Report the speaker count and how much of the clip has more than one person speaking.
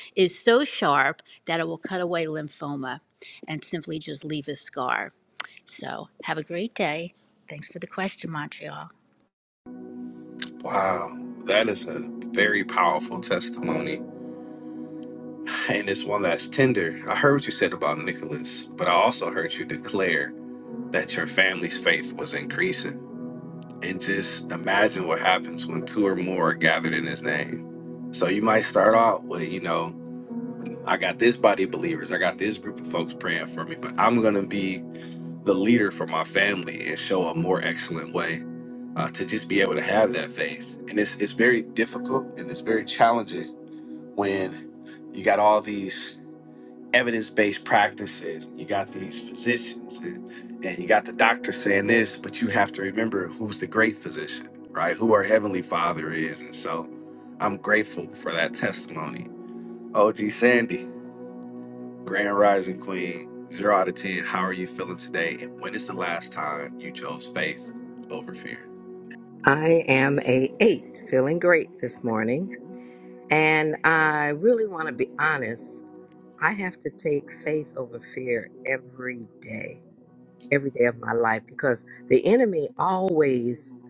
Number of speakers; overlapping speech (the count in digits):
3, no overlap